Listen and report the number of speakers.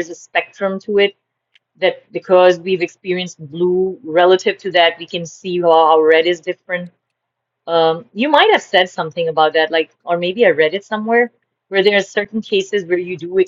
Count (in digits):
1